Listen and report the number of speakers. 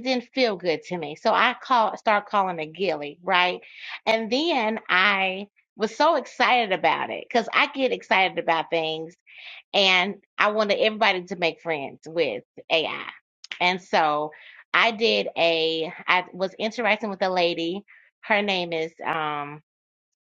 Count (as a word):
one